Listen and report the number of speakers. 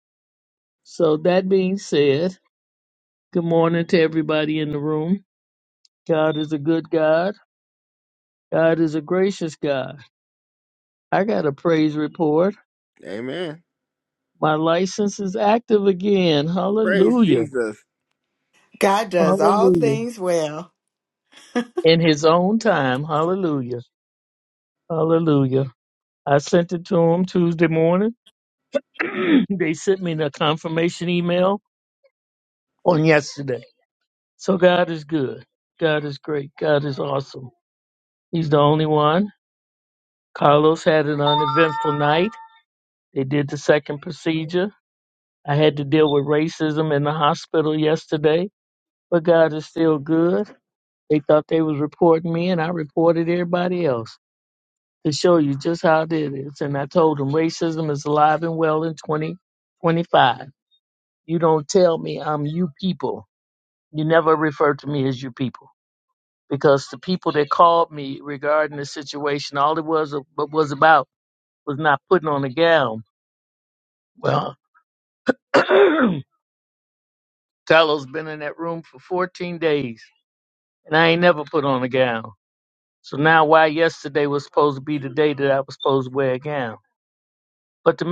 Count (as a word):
three